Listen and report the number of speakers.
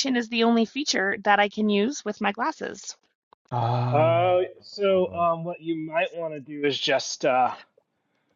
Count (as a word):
three